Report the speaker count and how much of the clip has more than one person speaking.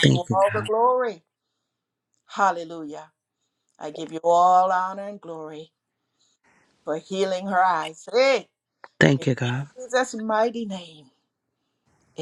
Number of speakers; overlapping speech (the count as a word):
two, about 6%